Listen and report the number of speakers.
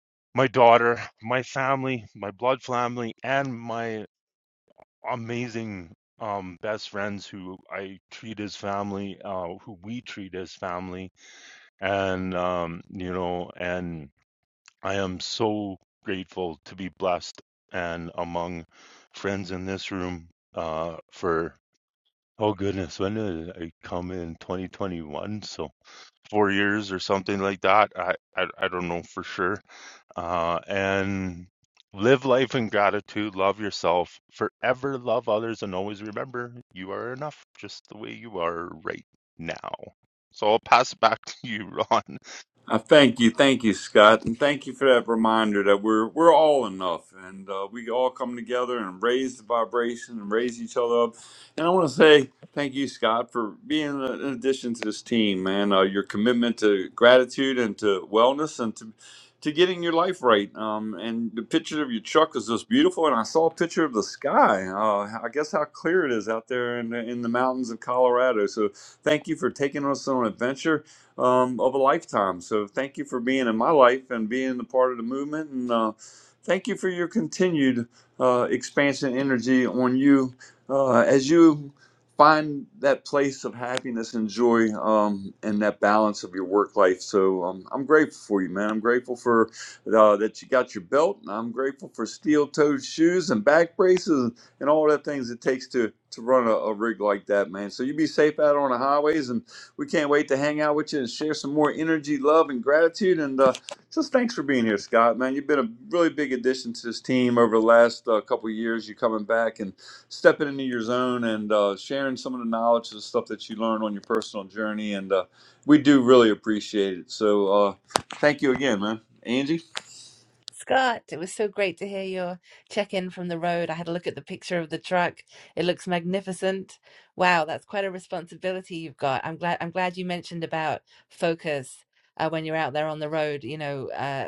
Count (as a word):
three